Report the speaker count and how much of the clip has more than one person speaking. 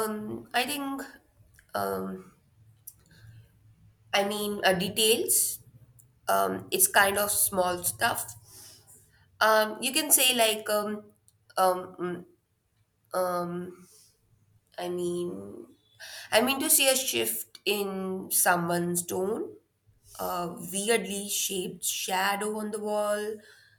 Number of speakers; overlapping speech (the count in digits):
1, no overlap